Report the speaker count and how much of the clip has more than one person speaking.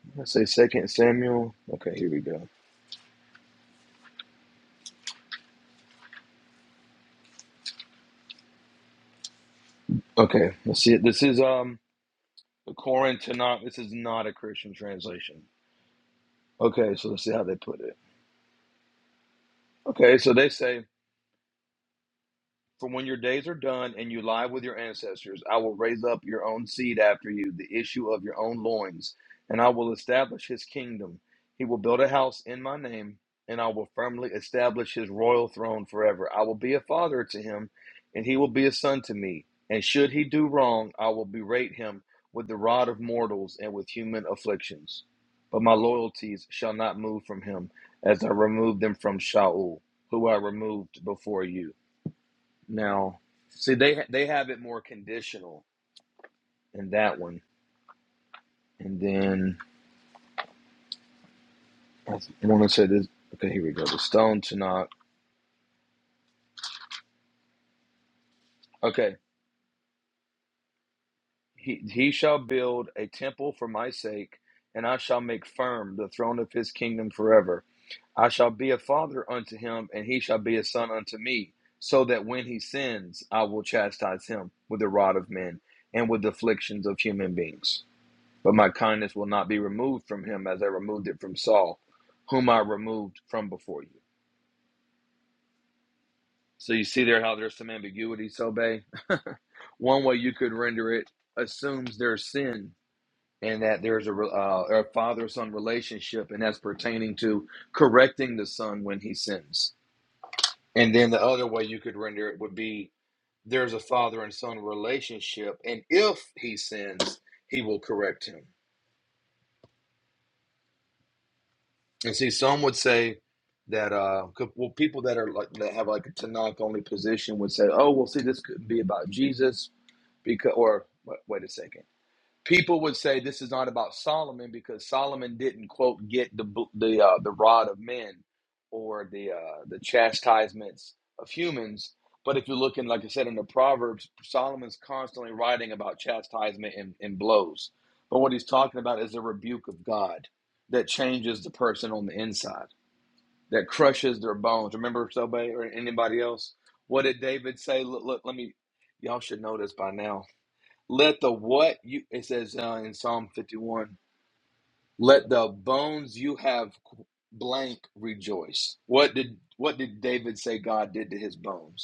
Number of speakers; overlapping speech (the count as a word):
one, no overlap